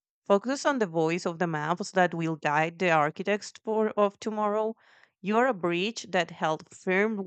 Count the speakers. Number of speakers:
1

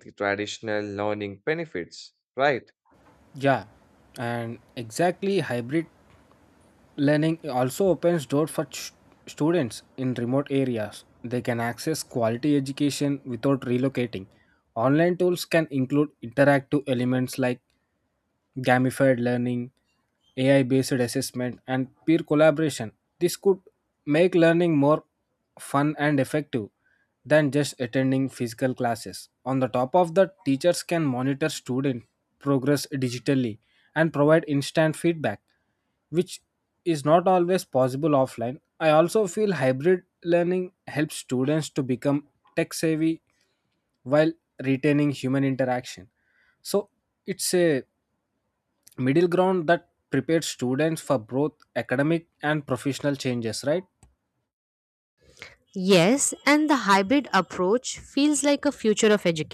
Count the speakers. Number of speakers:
3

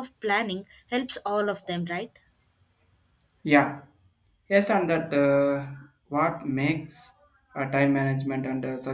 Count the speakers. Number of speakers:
2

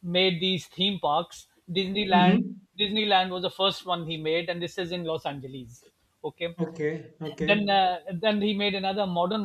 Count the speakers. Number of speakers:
2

